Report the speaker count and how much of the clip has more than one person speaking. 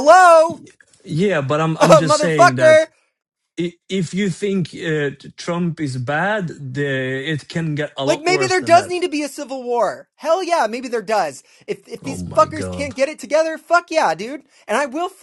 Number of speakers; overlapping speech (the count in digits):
2, about 19%